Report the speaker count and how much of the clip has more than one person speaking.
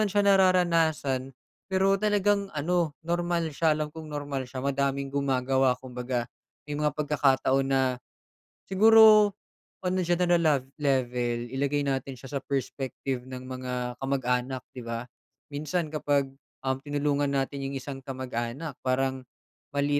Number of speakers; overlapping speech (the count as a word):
one, no overlap